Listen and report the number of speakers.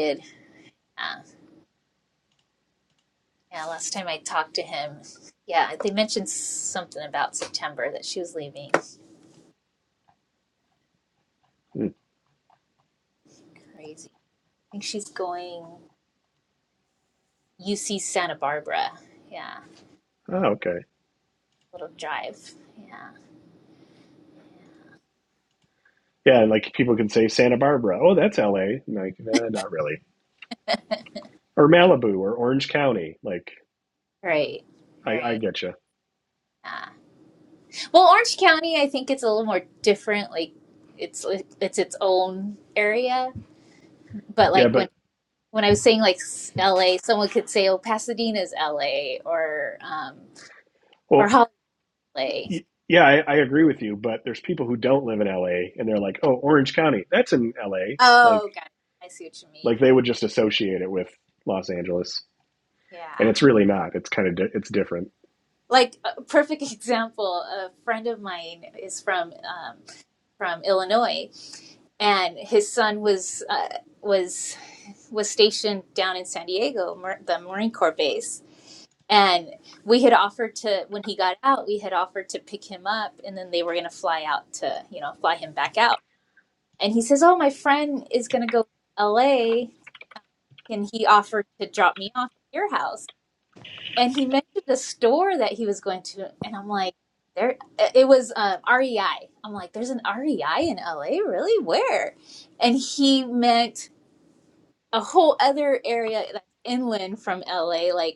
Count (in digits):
2